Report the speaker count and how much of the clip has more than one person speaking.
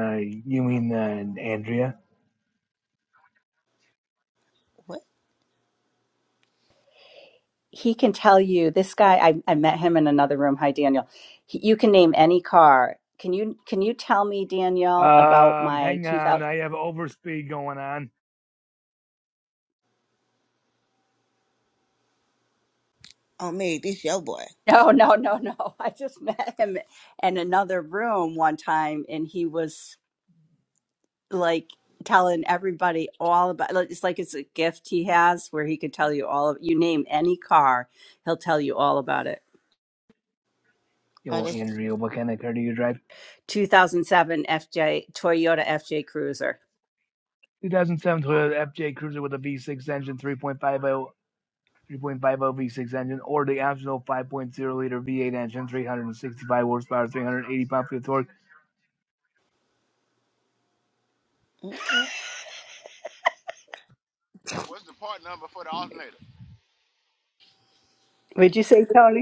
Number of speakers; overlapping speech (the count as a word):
four, about 2%